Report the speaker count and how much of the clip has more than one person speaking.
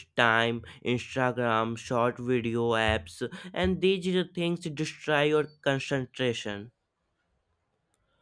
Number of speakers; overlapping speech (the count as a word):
one, no overlap